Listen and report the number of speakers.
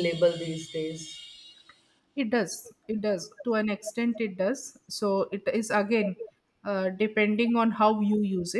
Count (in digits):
2